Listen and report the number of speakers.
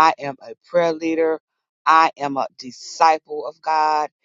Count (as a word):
one